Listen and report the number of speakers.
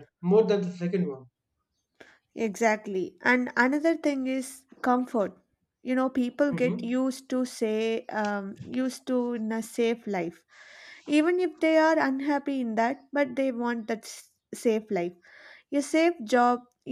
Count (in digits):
2